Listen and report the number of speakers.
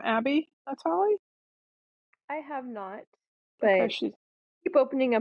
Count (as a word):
two